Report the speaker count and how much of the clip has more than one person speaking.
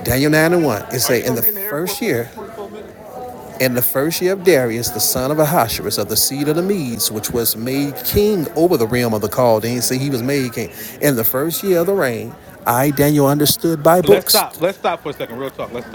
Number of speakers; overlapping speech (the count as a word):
two, about 11%